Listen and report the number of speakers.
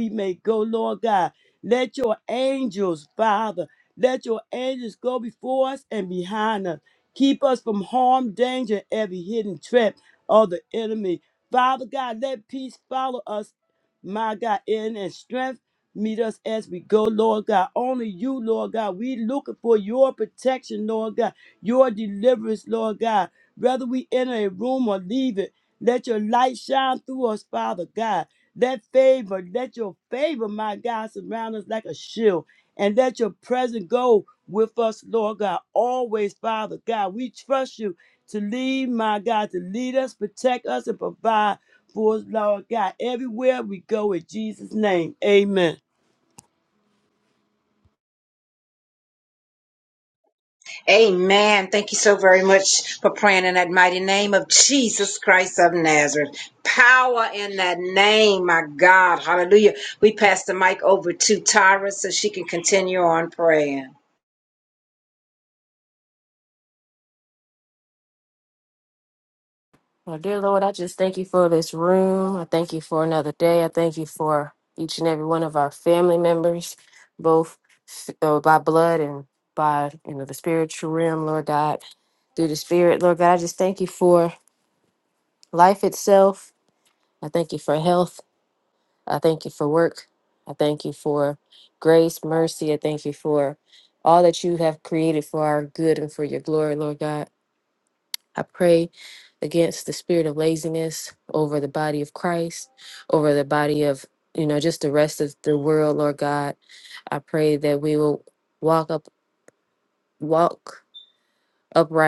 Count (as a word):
three